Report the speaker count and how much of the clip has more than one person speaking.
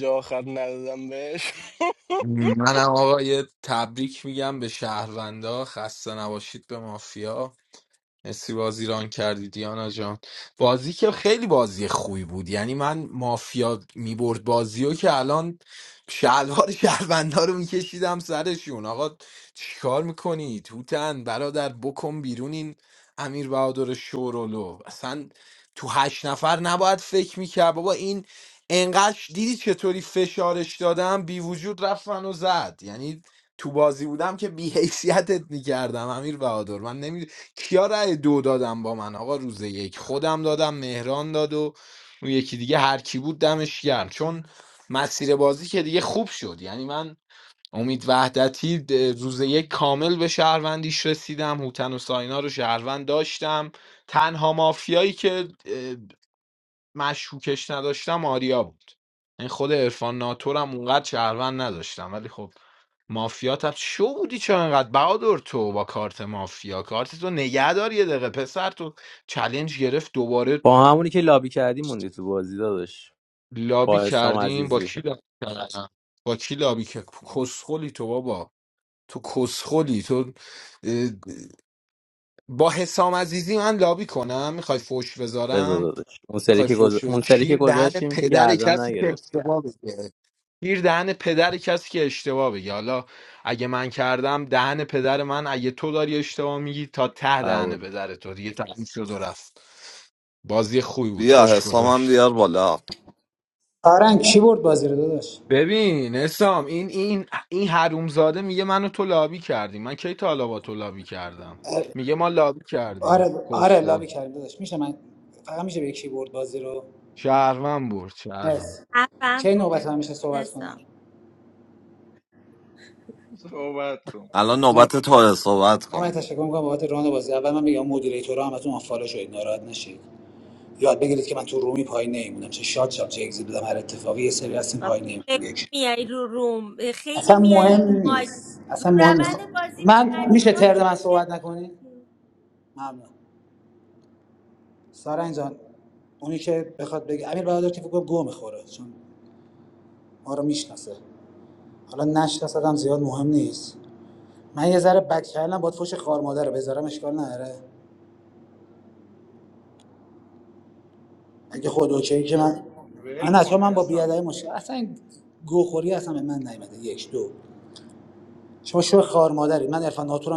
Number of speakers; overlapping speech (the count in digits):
7, about 7%